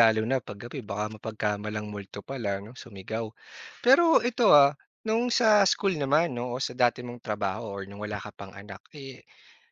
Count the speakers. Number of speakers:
1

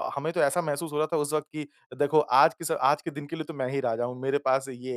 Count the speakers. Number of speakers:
1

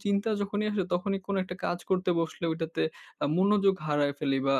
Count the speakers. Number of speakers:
1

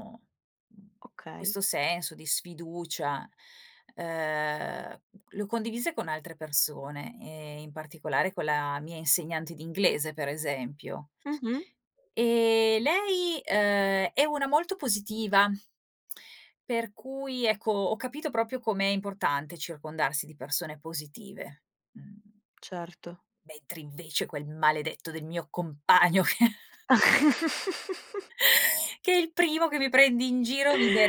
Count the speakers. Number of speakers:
2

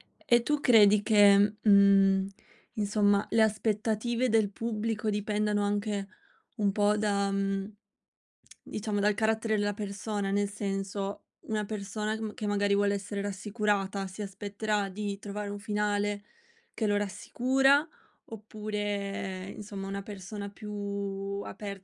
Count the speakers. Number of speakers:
1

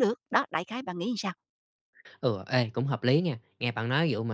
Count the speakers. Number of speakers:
2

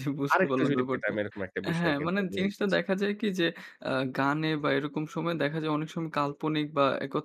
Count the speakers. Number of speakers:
2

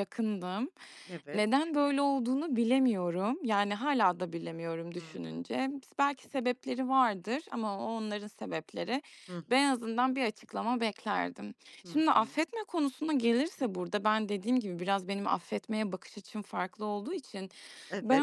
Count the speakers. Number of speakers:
2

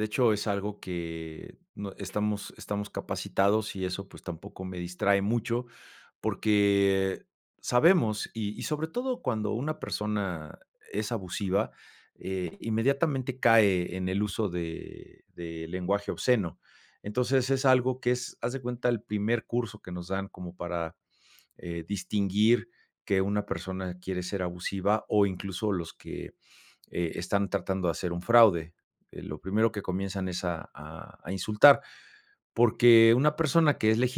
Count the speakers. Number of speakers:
1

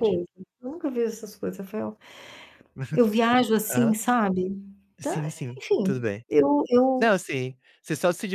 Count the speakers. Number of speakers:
2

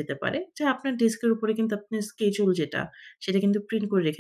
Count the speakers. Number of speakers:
1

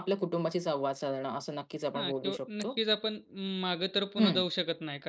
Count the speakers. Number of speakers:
2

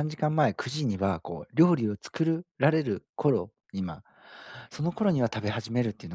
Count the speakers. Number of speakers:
1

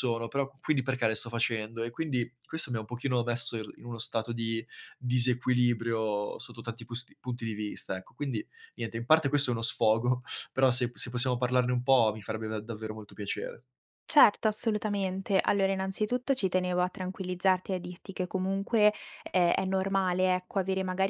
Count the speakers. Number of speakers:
2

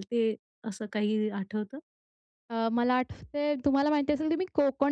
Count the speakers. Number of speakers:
2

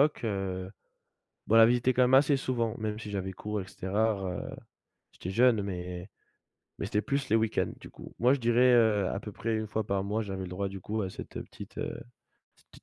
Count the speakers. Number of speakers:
1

